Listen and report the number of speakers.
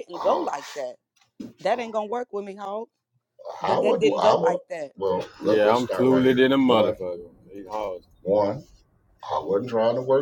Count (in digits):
3